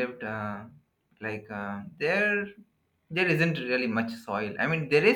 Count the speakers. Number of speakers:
one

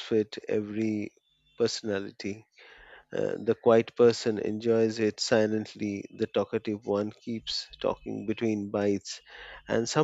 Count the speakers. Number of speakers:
one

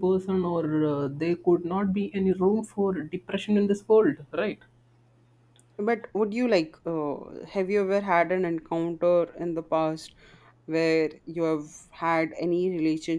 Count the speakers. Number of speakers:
two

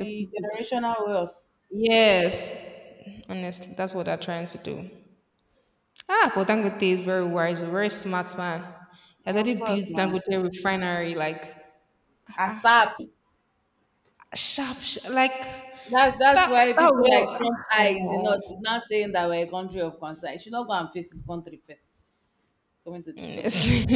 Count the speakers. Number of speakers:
two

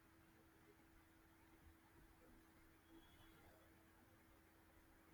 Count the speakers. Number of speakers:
zero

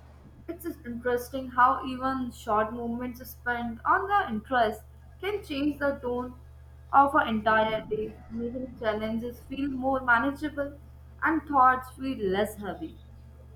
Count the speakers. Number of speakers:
one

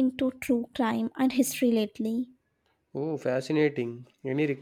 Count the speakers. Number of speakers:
two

